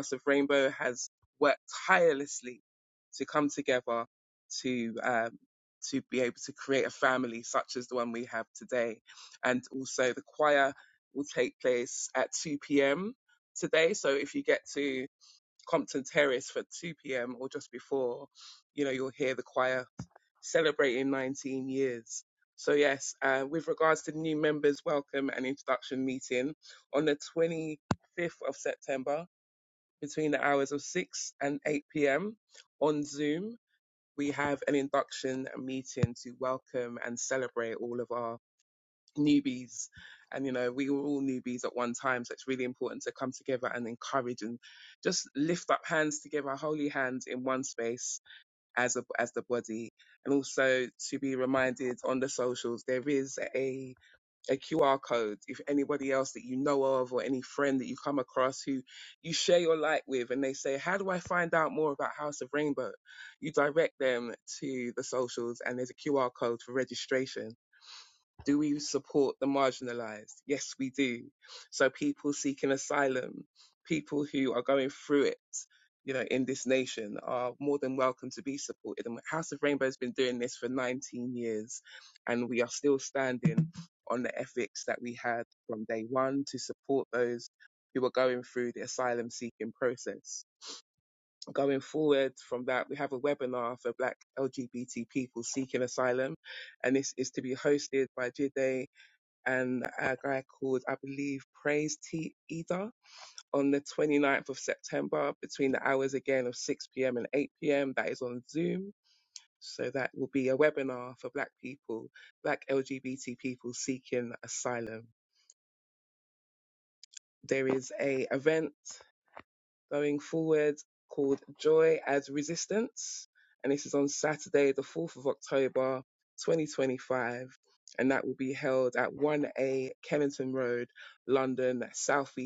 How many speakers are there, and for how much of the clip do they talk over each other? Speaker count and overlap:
1, no overlap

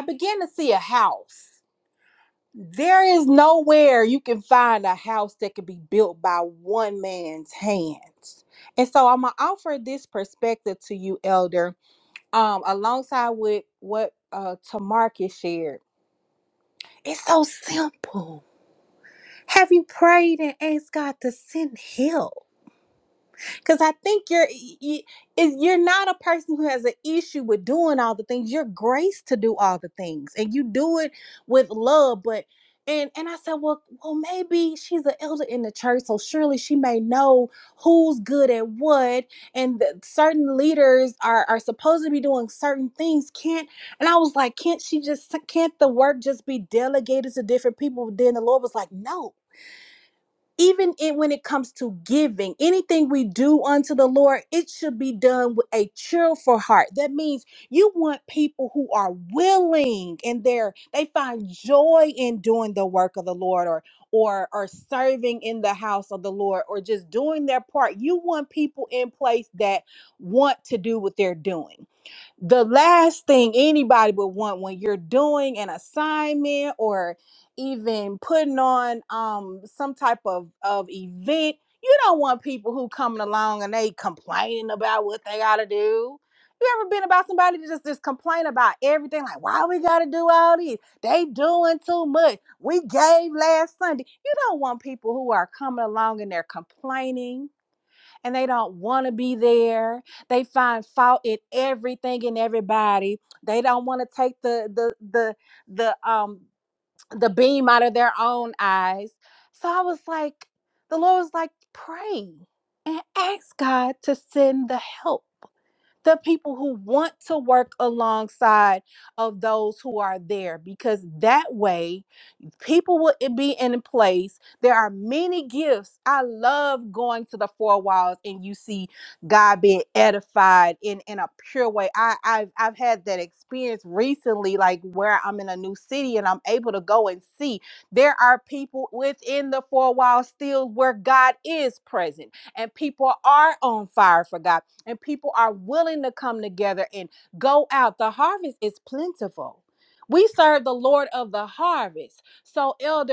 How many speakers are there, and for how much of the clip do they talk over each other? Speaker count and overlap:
1, no overlap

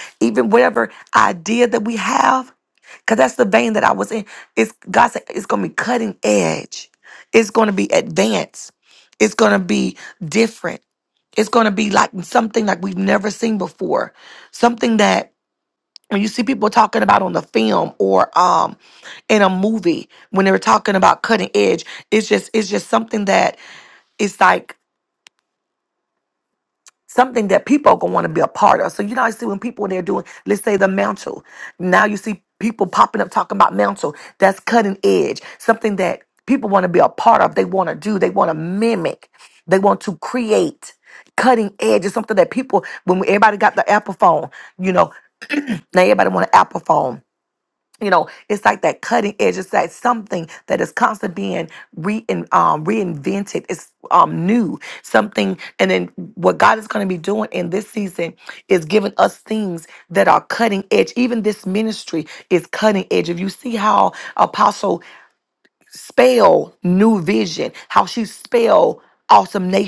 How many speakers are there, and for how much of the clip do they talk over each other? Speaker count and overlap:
1, no overlap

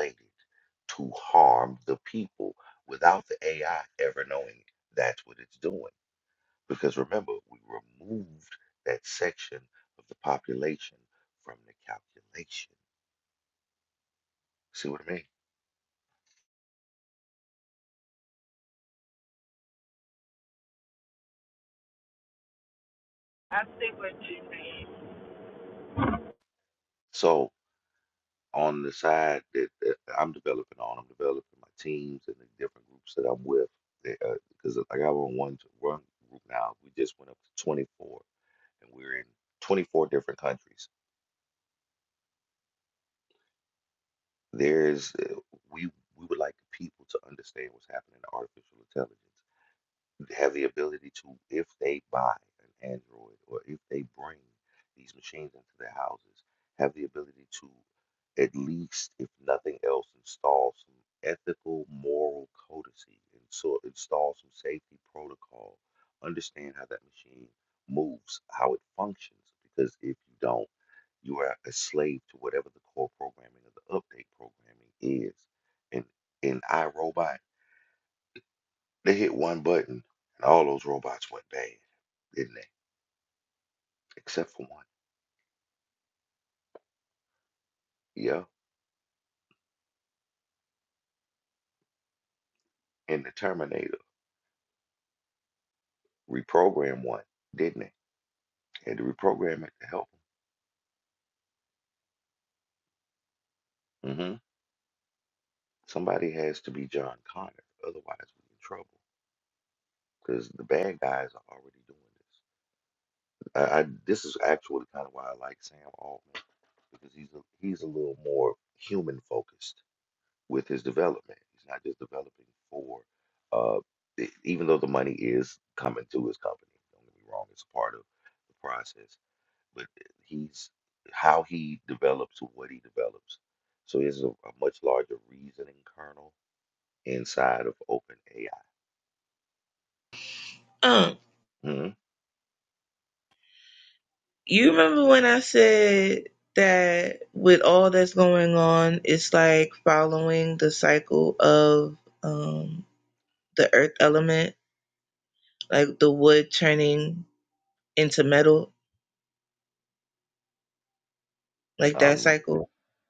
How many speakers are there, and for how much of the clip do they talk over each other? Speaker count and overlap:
3, under 1%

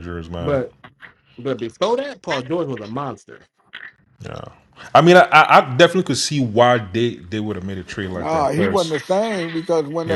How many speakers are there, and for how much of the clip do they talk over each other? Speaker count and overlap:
3, about 11%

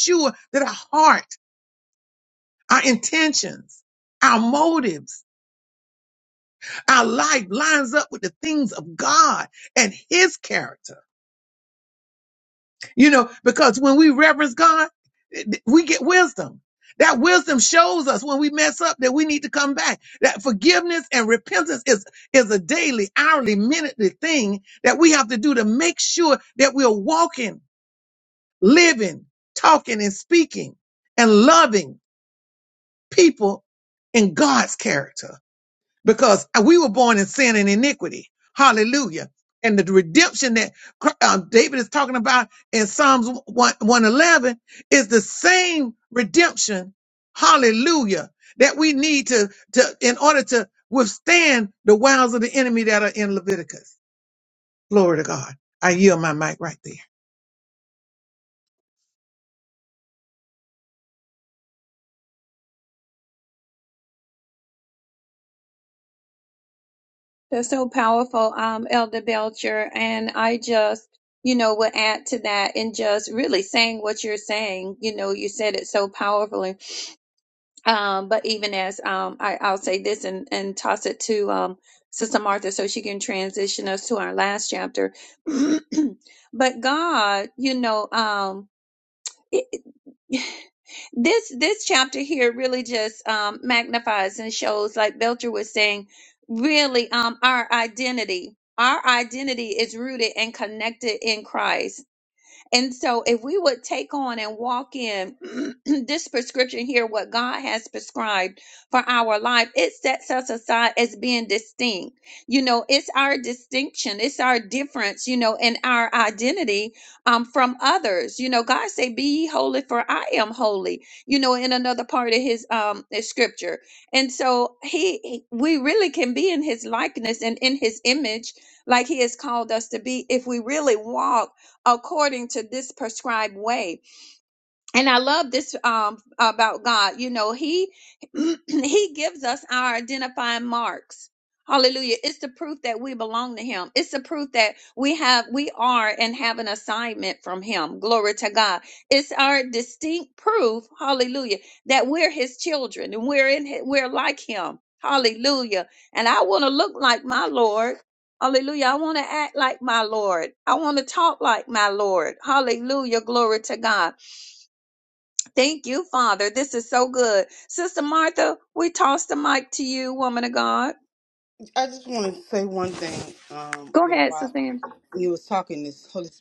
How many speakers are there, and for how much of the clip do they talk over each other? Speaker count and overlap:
3, under 1%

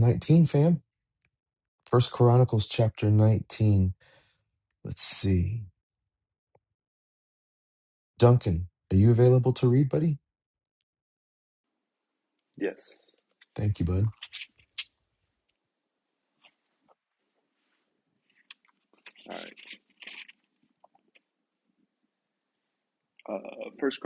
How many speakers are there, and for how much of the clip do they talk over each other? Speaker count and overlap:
2, no overlap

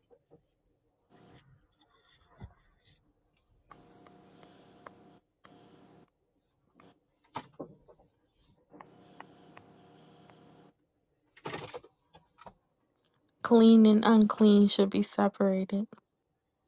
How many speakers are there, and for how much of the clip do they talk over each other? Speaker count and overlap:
1, no overlap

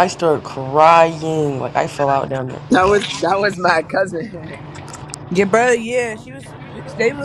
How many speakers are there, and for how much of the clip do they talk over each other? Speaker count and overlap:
3, no overlap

